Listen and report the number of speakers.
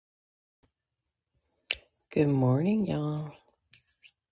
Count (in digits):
1